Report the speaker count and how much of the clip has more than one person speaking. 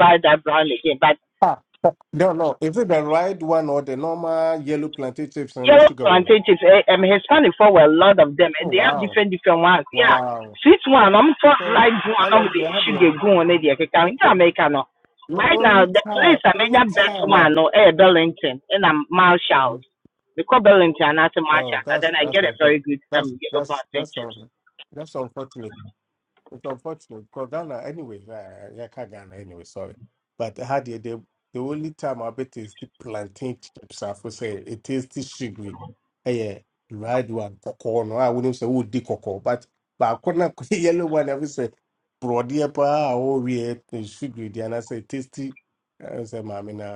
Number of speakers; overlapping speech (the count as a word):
two, about 16%